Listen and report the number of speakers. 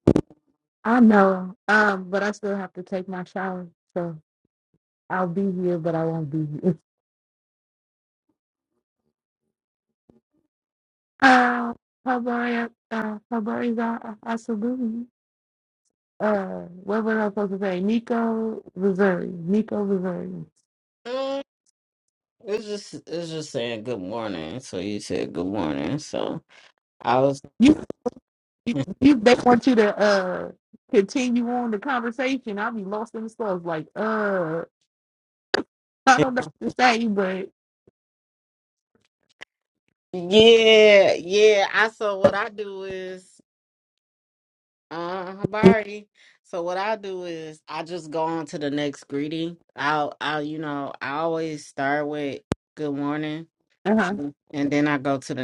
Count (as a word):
two